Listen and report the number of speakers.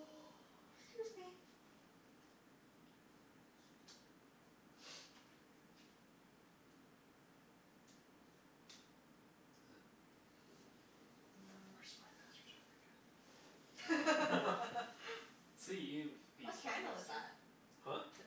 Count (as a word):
three